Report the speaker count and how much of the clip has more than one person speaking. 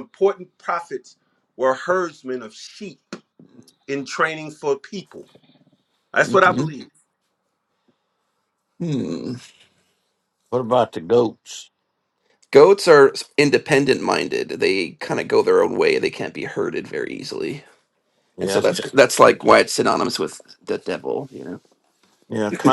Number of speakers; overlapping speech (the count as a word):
three, about 4%